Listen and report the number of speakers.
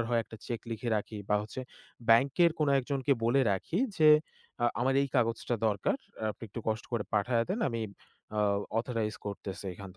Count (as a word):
one